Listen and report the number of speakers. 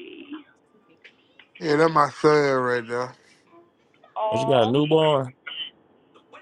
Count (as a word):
three